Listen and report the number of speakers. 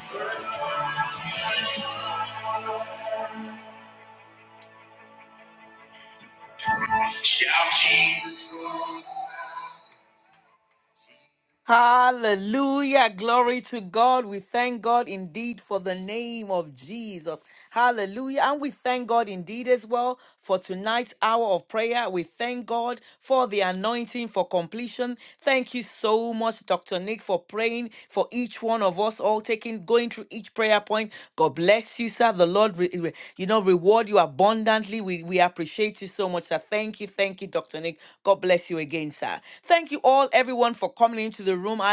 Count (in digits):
2